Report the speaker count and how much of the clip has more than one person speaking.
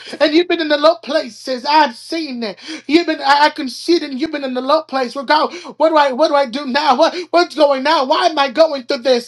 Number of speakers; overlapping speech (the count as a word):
one, no overlap